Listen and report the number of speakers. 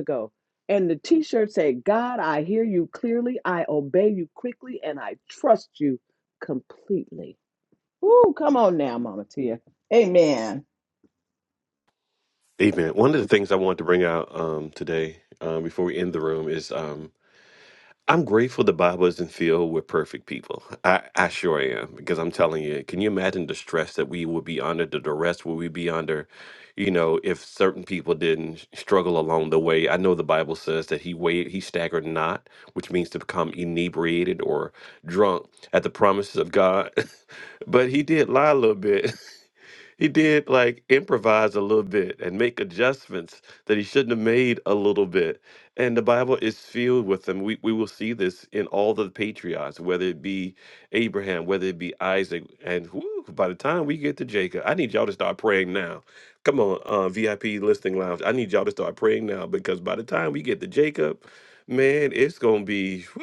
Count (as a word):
two